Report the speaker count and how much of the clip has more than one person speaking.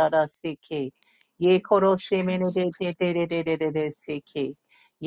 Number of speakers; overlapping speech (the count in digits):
1, no overlap